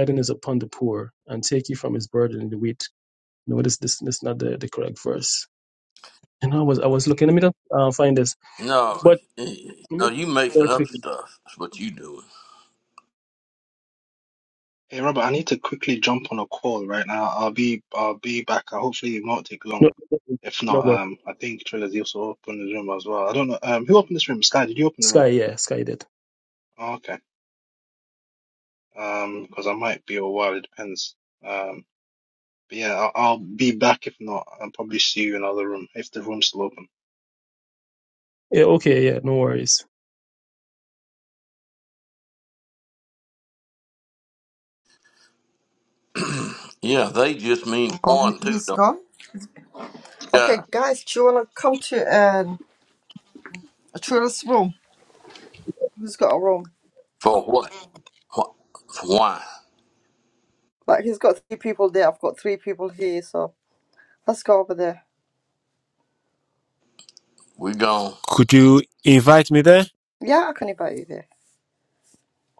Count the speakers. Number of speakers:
five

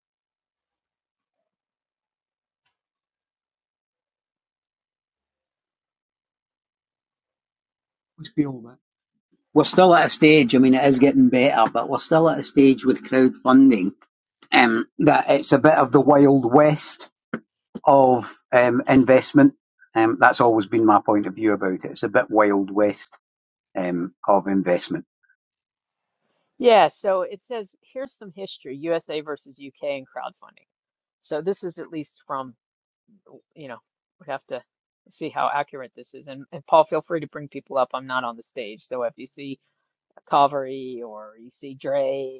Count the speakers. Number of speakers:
two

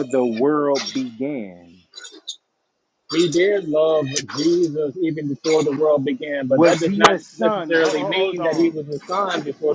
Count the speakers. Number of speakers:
two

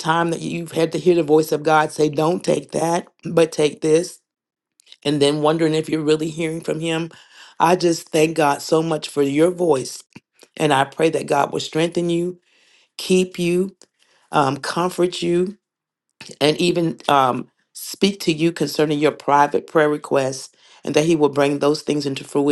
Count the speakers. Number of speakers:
one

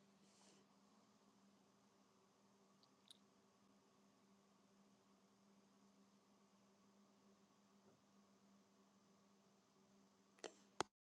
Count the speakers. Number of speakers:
zero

